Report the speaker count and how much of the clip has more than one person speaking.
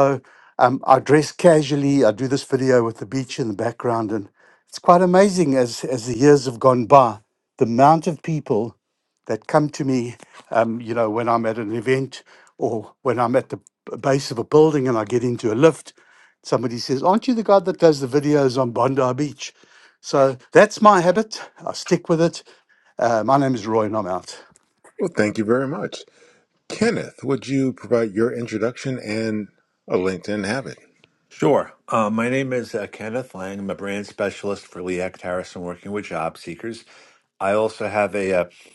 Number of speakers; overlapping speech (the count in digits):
3, no overlap